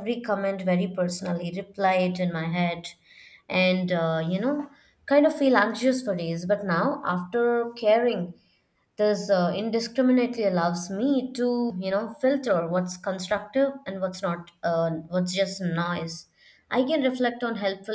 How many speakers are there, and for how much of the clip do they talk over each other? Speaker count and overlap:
1, no overlap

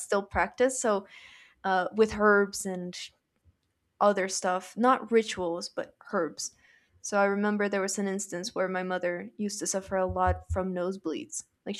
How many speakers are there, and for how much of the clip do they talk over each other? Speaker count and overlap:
1, no overlap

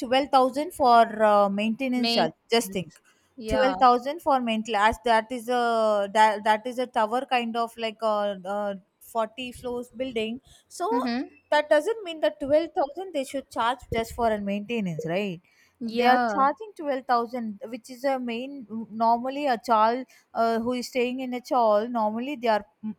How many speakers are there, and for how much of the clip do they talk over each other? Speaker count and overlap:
2, about 5%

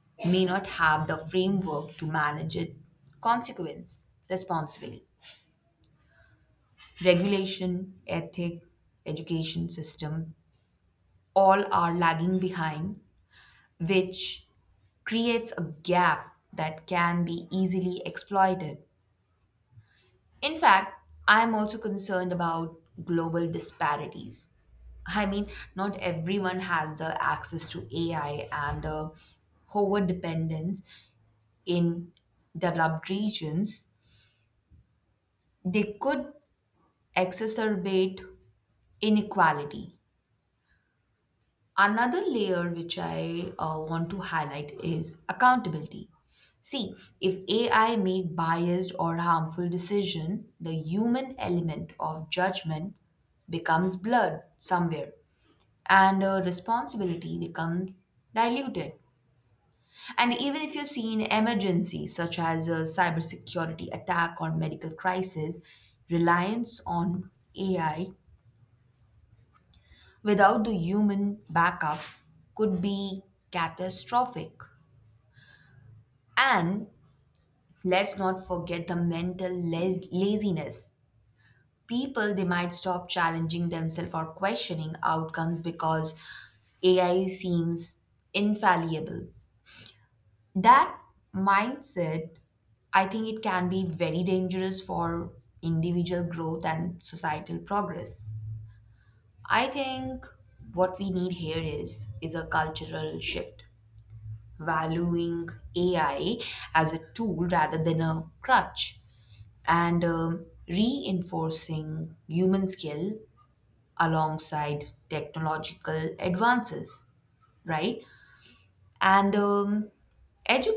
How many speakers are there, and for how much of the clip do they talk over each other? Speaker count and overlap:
1, no overlap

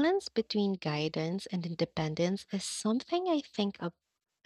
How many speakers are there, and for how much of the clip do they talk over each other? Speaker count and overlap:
1, no overlap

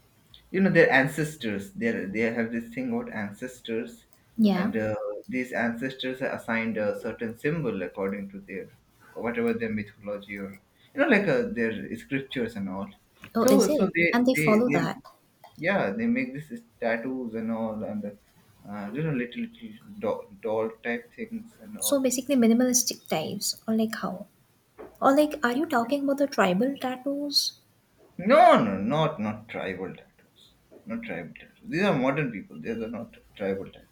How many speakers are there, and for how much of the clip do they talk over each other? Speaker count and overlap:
2, about 5%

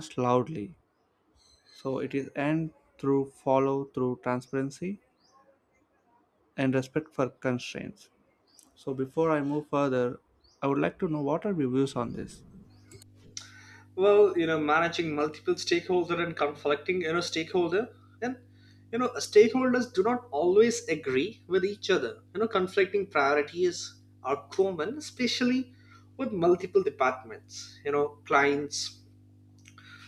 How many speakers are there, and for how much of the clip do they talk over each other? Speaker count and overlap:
2, no overlap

